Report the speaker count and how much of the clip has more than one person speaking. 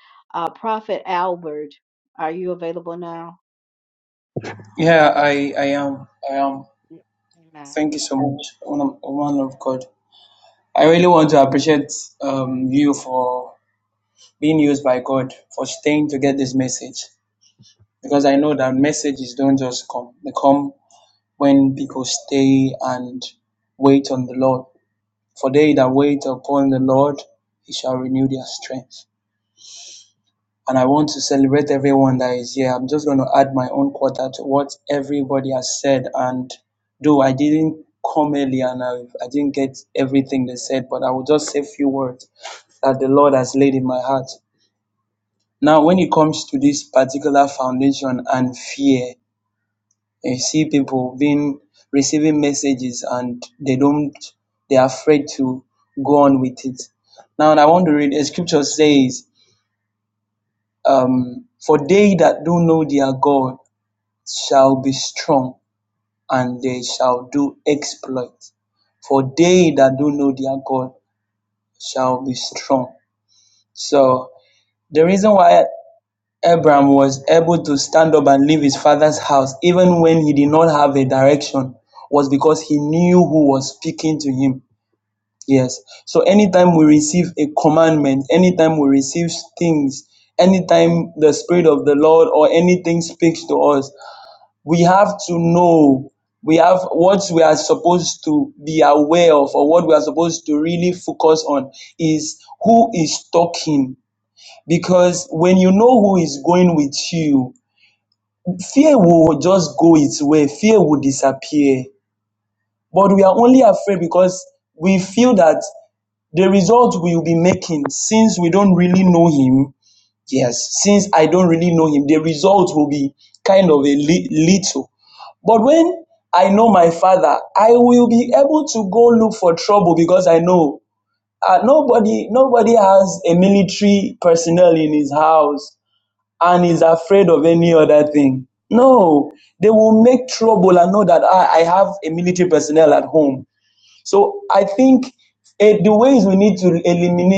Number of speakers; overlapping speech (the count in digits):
2, no overlap